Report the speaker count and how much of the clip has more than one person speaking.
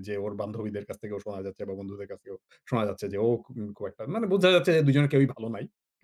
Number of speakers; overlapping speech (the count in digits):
1, no overlap